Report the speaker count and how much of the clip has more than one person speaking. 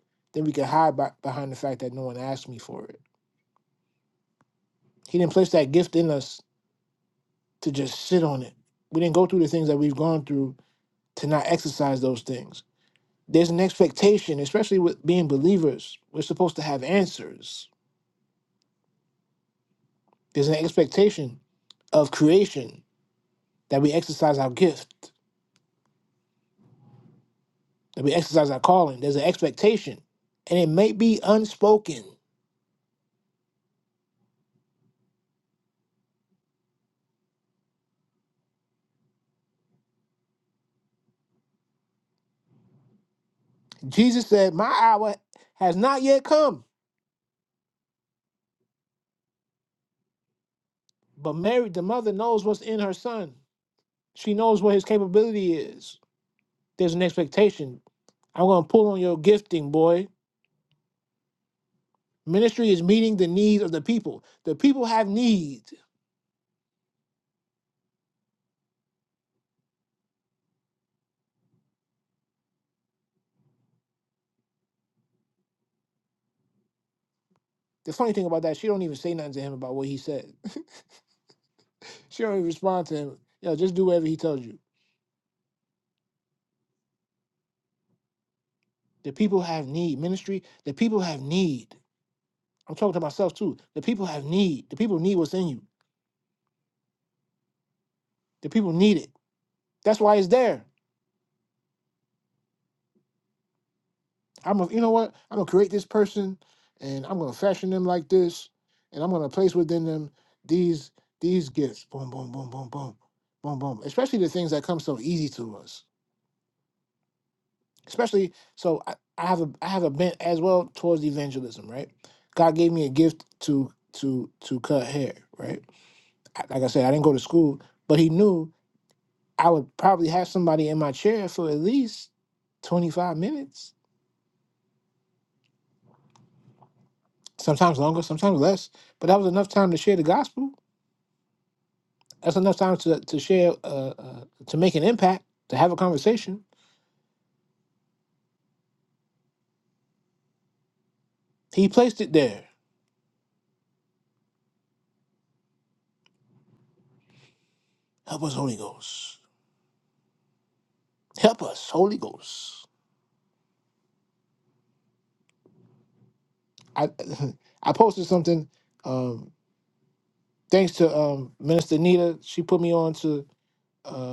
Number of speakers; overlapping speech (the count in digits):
1, no overlap